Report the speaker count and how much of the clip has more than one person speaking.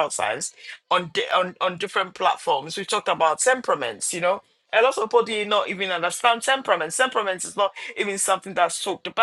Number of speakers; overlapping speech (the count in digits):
1, no overlap